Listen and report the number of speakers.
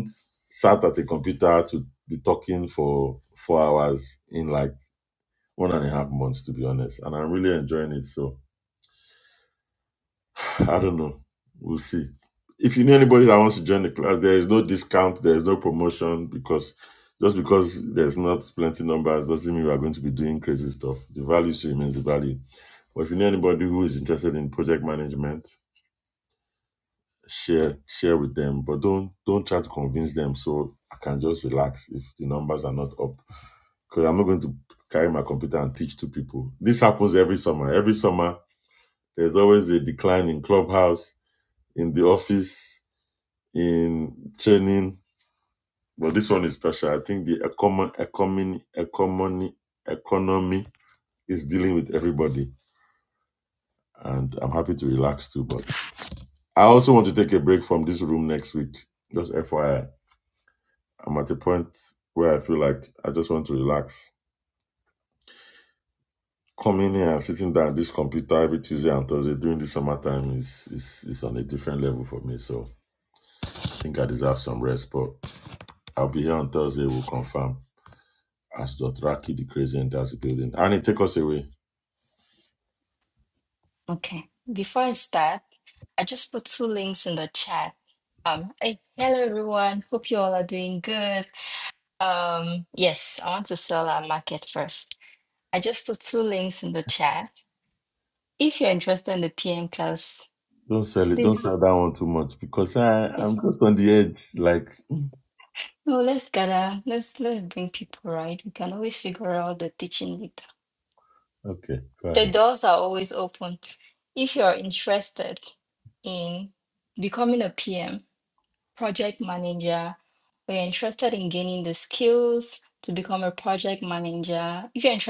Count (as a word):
two